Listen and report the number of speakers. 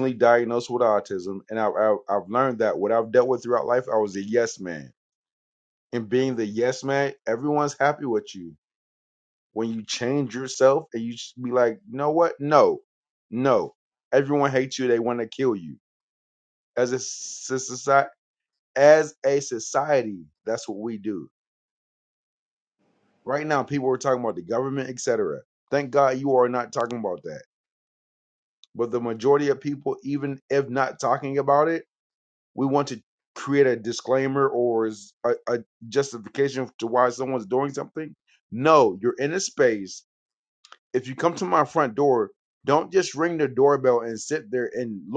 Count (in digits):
1